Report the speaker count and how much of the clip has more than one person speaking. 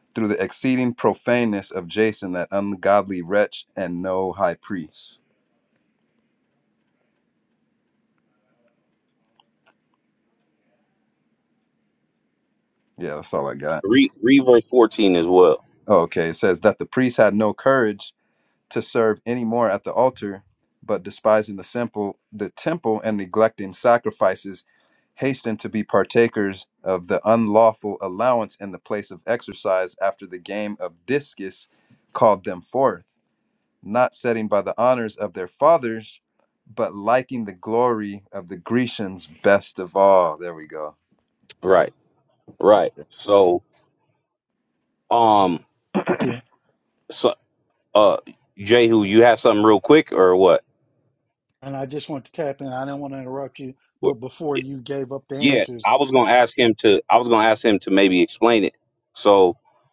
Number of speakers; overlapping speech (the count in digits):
3, about 1%